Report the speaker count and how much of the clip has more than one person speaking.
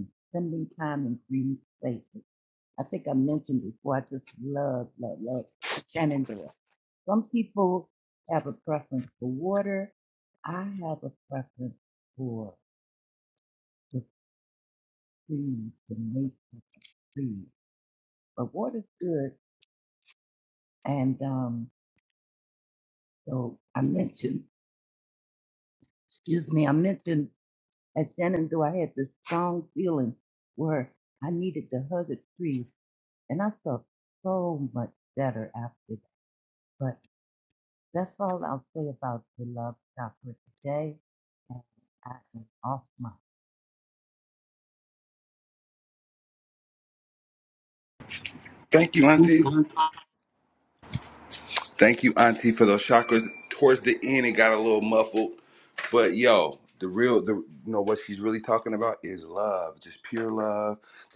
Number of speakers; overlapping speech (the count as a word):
two, no overlap